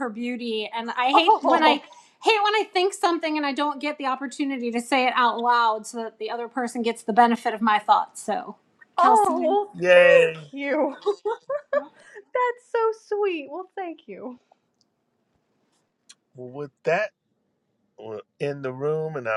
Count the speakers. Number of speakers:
3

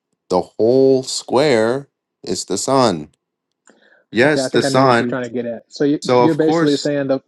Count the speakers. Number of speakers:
2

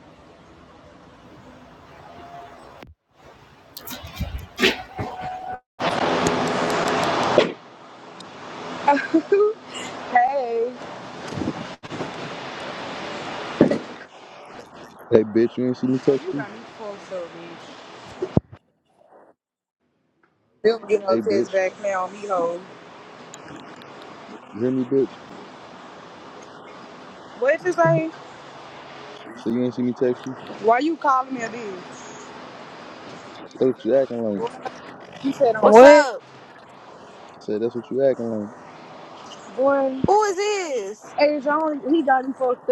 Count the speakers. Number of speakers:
3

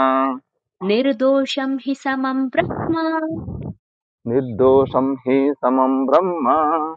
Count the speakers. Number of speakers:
2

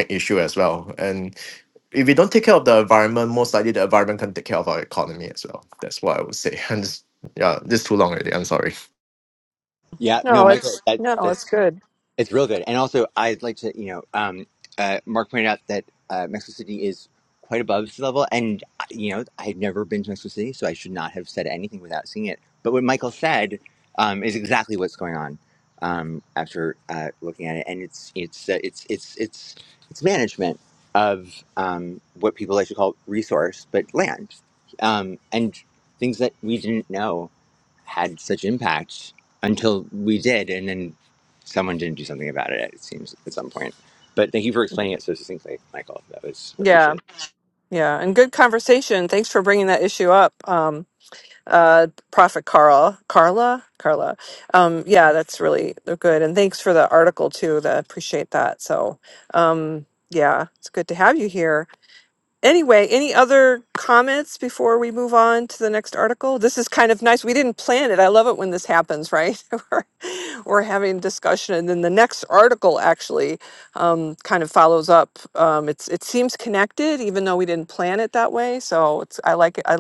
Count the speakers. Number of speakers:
3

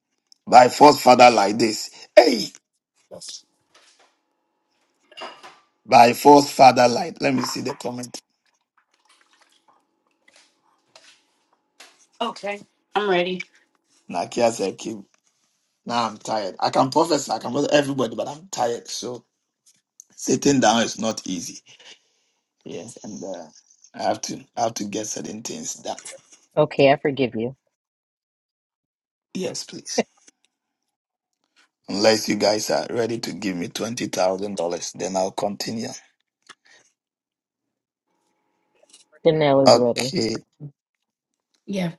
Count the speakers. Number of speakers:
3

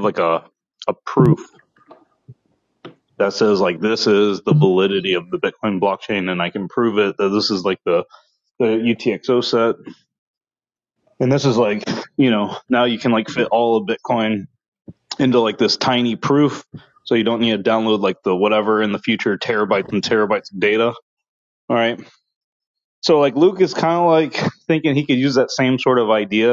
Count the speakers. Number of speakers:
1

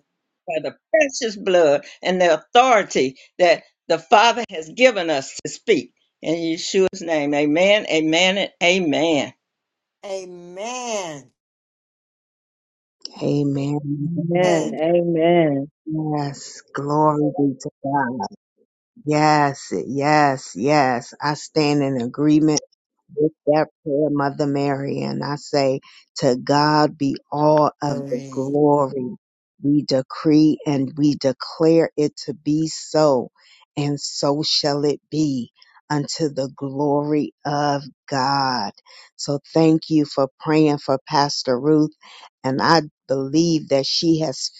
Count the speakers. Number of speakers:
4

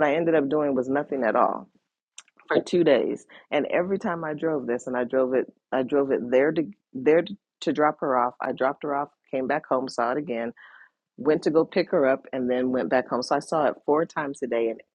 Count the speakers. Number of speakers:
1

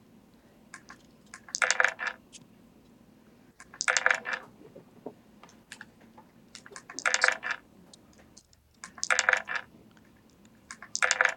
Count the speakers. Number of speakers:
0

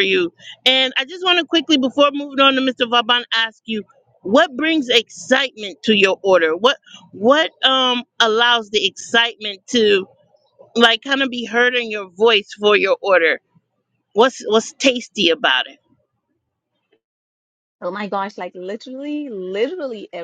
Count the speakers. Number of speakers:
2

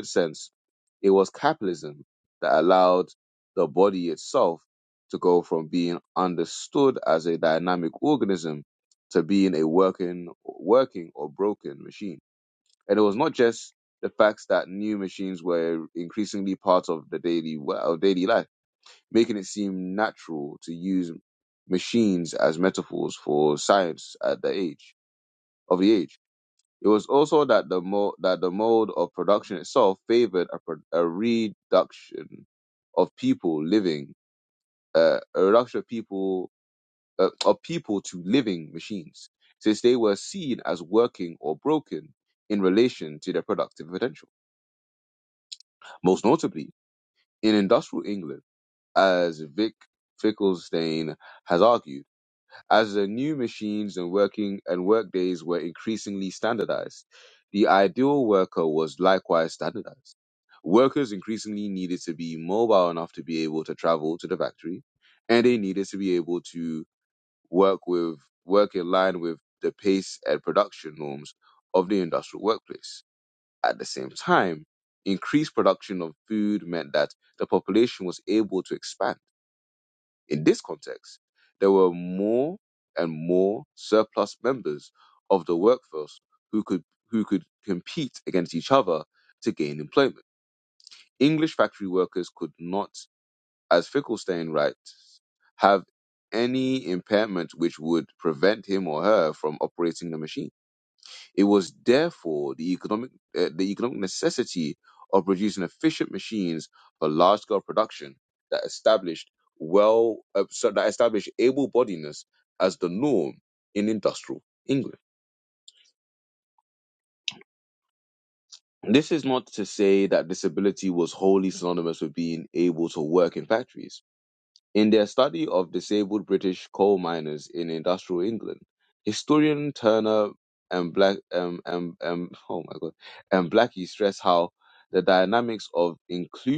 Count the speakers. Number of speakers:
1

